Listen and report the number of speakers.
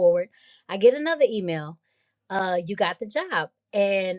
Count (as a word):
one